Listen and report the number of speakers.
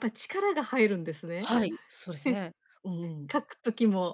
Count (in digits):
2